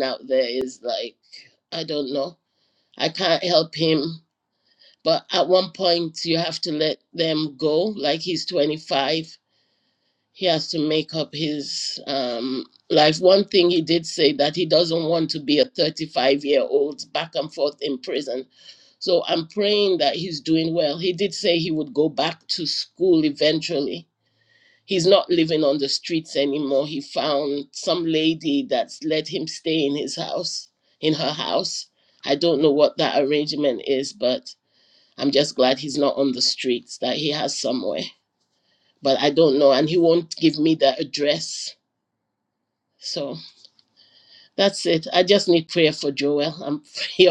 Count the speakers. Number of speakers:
1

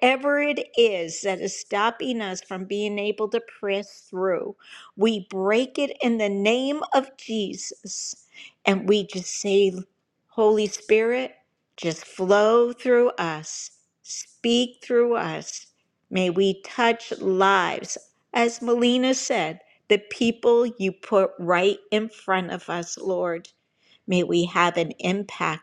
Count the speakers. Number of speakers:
1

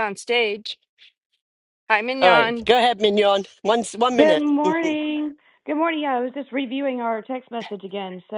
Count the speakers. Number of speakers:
3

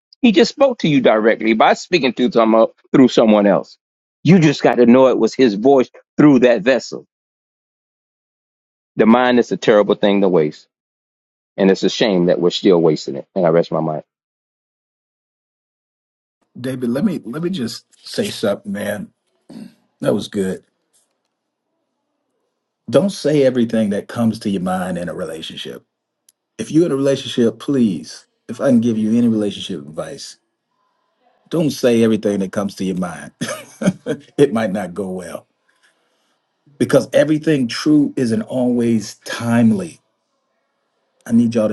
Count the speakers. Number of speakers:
2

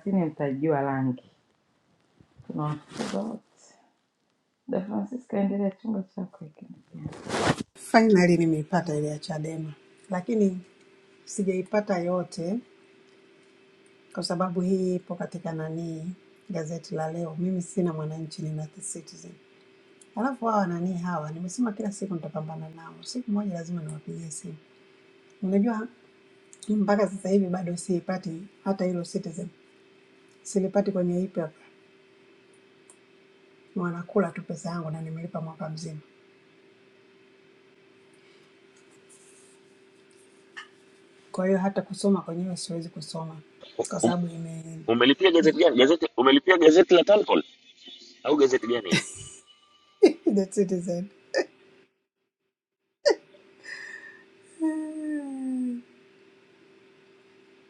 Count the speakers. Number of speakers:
3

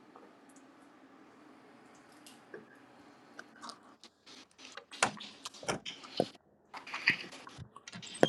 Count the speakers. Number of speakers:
0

